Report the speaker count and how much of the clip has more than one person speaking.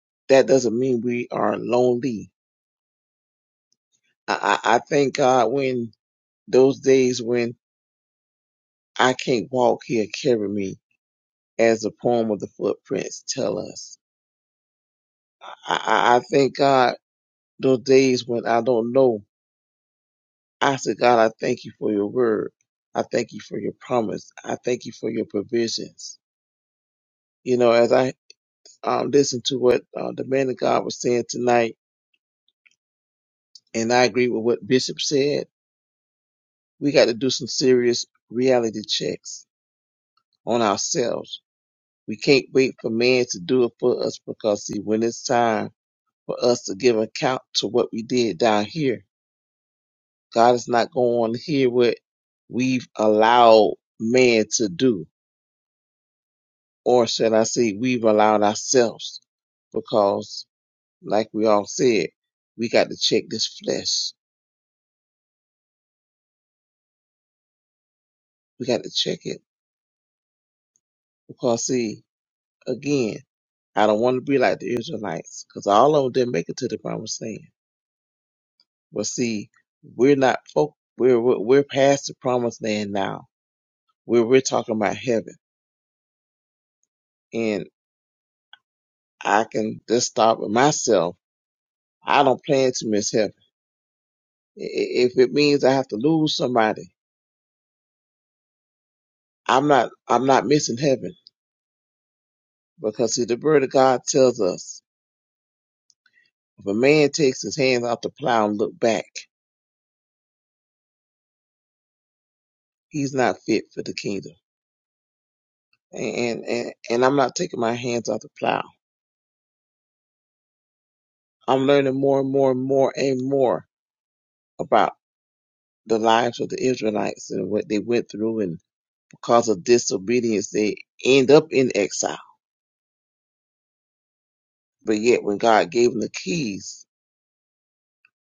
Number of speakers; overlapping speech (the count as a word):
one, no overlap